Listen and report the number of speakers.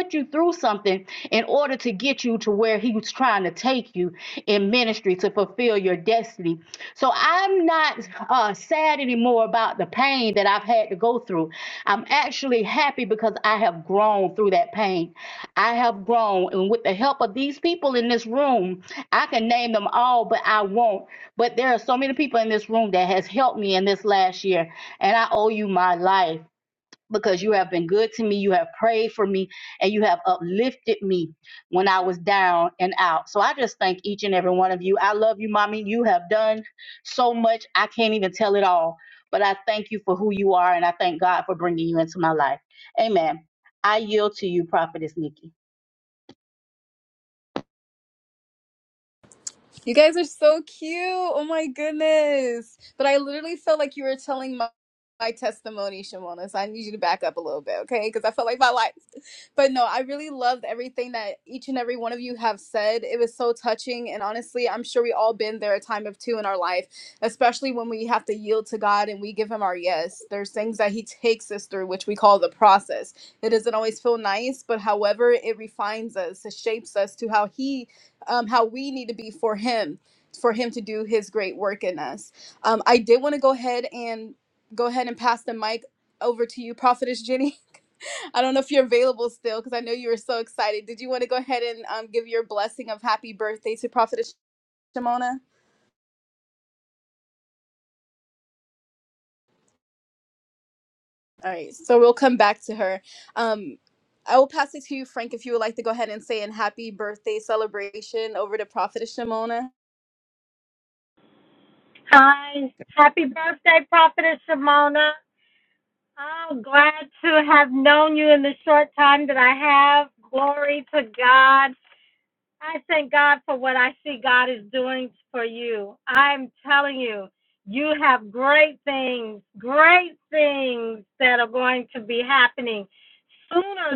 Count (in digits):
3